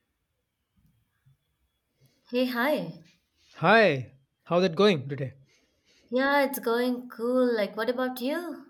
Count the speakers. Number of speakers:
2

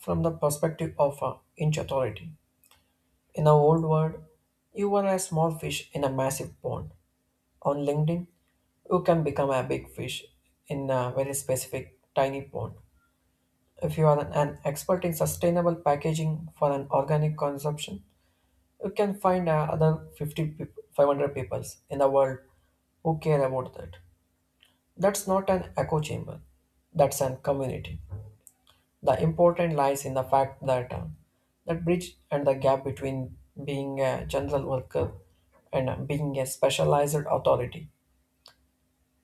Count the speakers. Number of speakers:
1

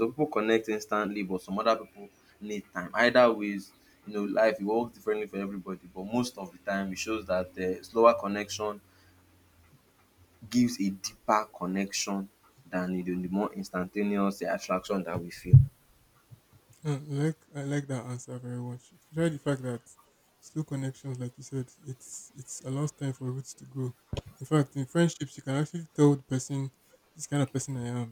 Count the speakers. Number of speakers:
2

